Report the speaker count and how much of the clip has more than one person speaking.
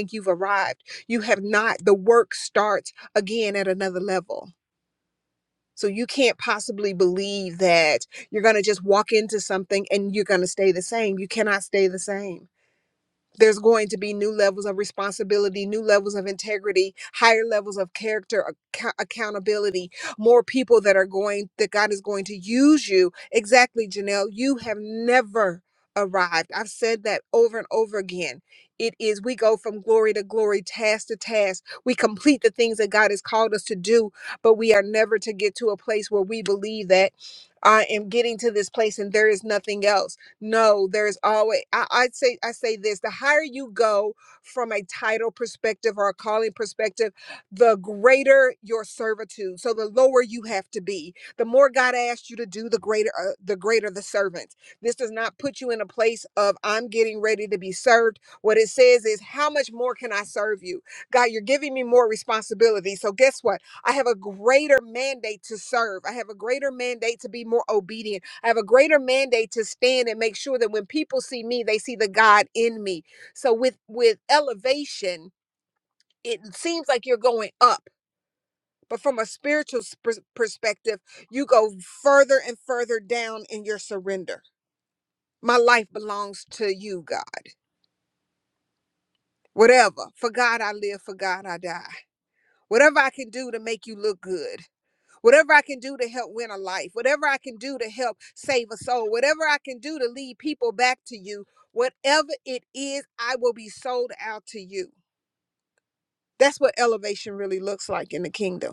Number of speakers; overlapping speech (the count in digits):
1, no overlap